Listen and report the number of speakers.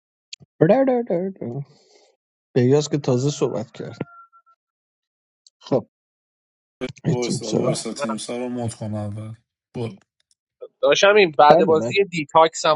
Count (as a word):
three